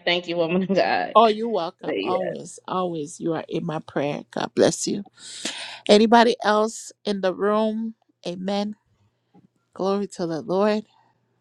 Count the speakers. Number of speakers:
2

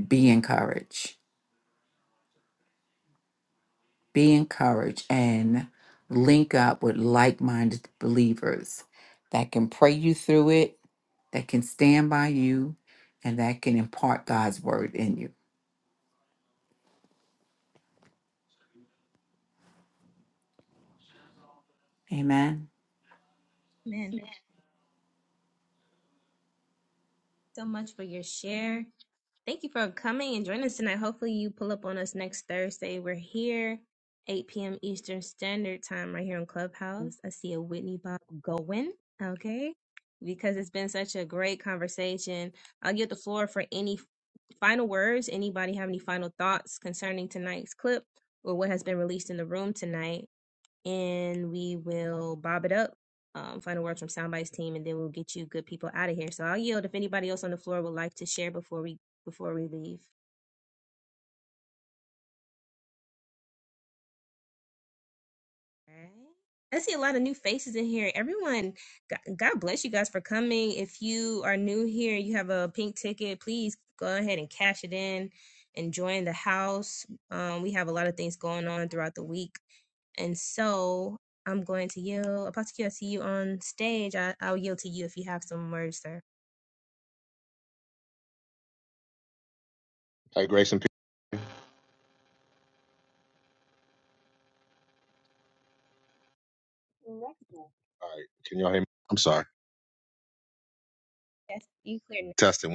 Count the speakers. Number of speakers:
3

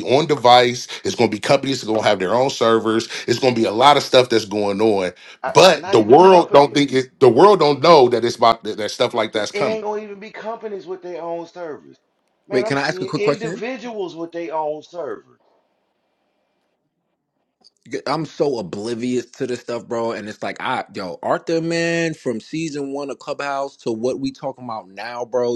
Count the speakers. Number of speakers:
3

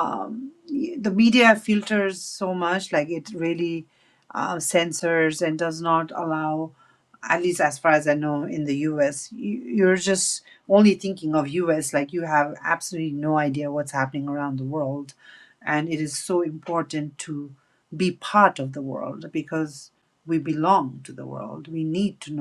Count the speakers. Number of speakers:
1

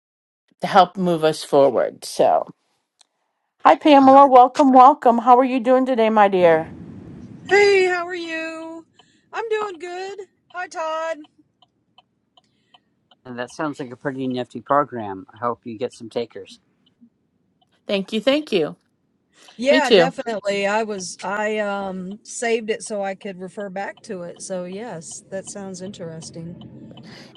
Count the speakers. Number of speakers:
3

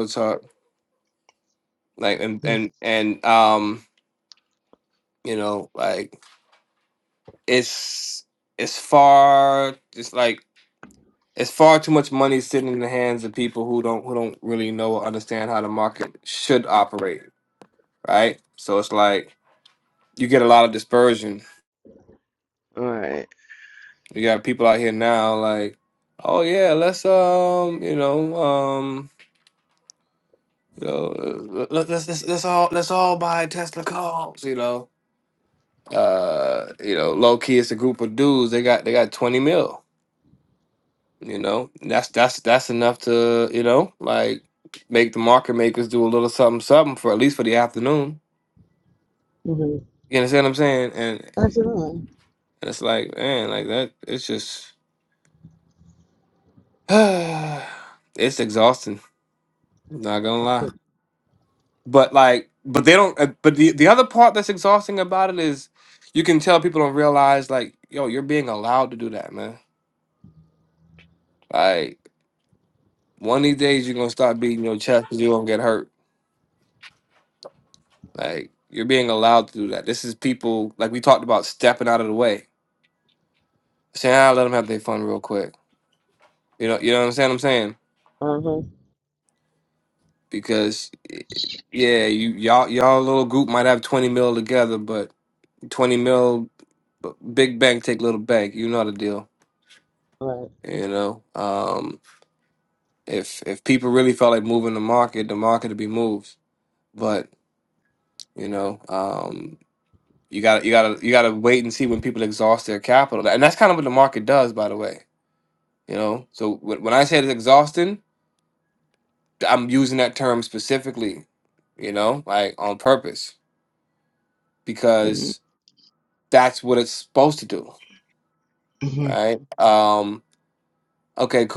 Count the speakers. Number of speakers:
2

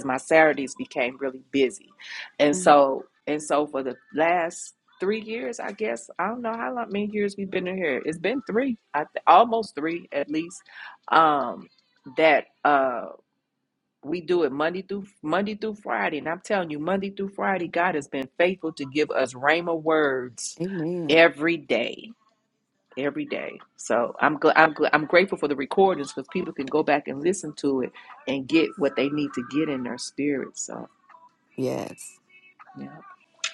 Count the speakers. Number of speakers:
2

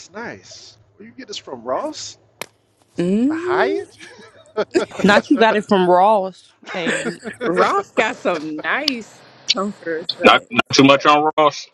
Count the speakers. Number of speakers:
4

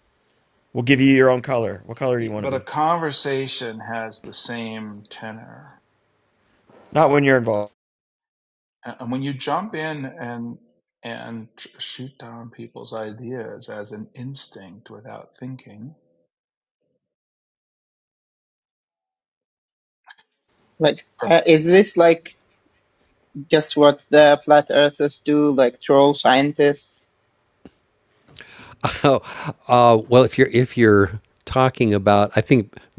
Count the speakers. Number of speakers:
4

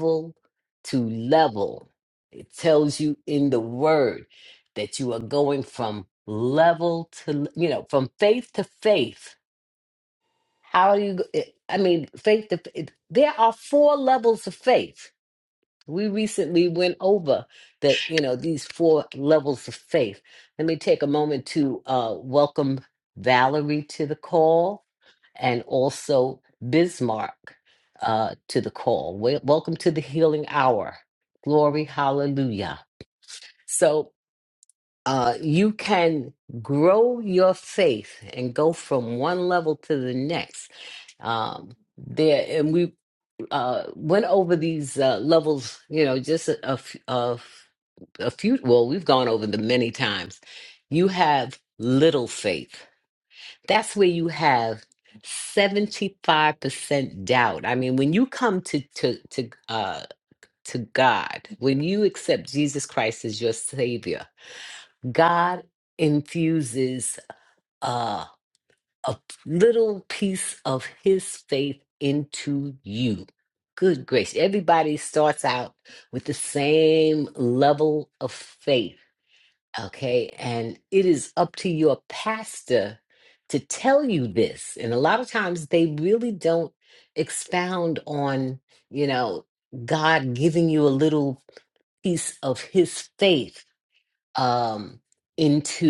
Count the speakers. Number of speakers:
1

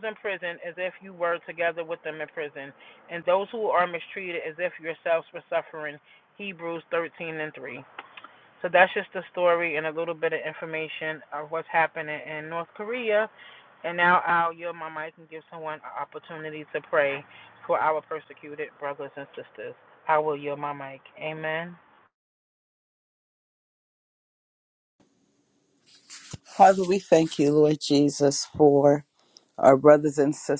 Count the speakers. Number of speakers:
2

